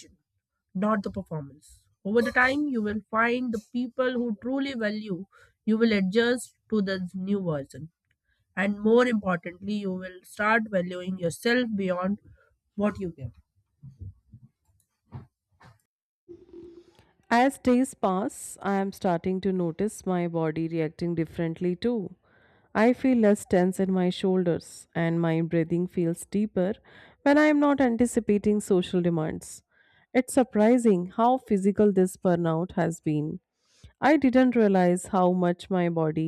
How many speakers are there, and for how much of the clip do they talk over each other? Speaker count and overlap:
two, no overlap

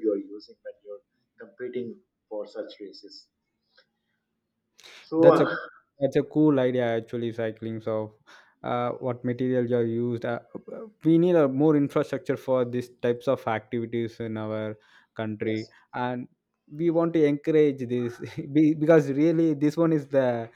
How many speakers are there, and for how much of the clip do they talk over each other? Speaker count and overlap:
two, about 2%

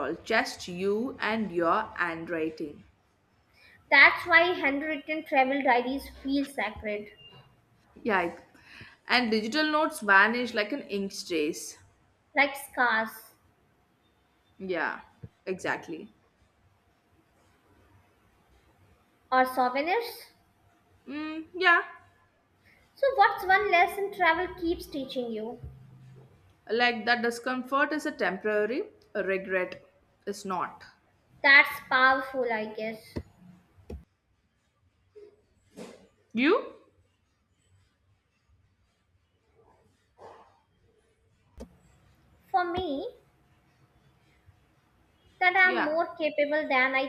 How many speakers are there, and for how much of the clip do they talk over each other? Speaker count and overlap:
two, about 1%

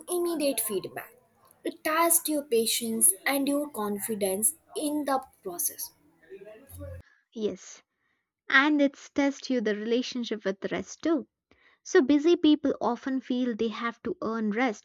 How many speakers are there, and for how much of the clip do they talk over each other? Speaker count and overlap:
two, no overlap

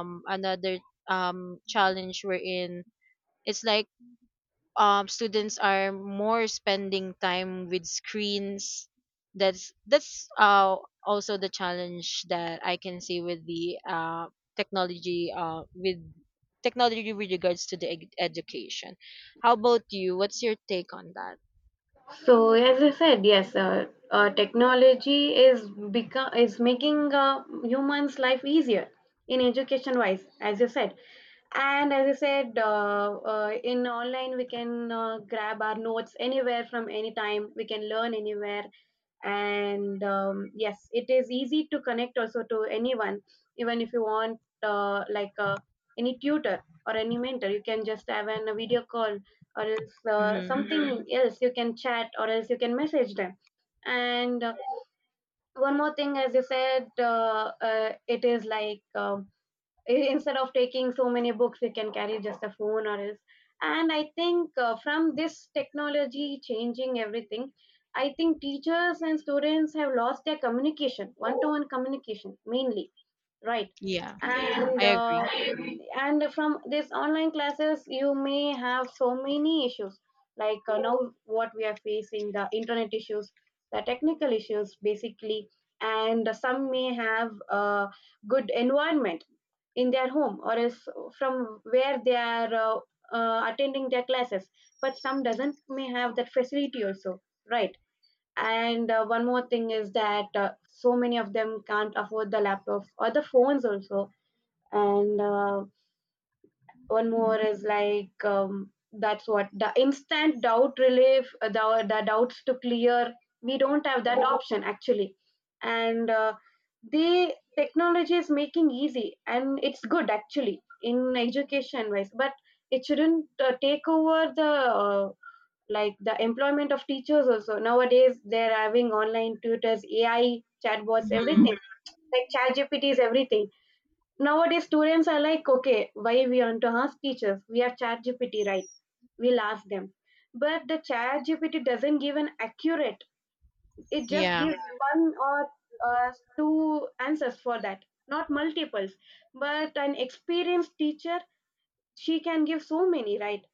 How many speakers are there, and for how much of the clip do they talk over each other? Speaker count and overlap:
two, about 1%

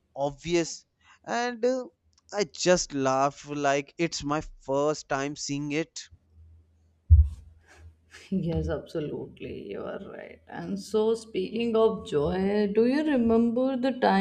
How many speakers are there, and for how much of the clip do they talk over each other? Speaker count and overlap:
two, no overlap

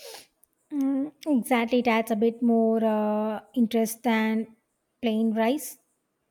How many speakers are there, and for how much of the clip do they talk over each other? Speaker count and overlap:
one, no overlap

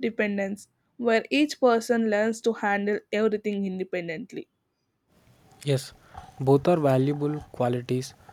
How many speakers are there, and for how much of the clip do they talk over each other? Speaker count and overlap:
two, no overlap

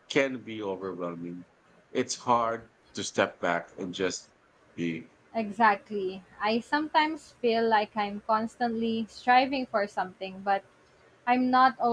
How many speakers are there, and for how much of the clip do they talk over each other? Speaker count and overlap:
two, no overlap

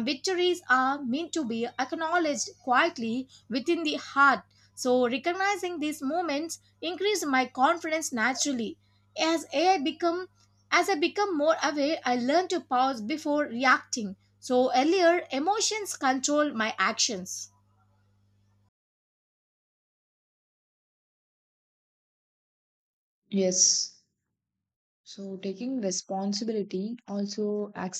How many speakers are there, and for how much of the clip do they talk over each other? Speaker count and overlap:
two, no overlap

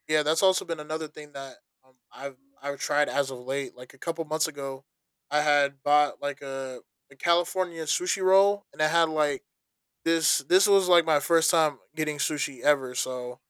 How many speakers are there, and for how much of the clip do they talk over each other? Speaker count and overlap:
one, no overlap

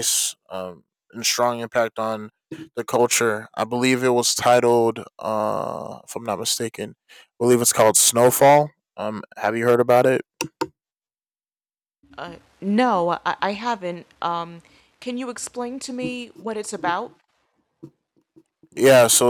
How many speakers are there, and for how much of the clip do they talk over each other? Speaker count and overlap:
two, no overlap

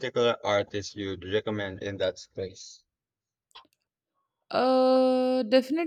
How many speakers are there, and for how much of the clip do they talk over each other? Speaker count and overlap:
two, no overlap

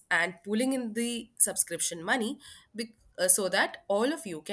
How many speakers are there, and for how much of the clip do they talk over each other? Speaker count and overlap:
one, no overlap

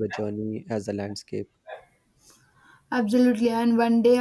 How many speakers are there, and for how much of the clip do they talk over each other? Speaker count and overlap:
two, no overlap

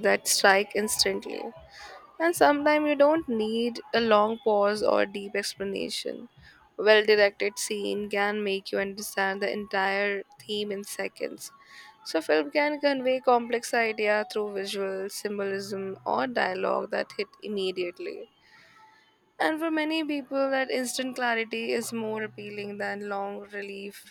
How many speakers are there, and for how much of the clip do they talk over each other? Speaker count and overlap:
one, no overlap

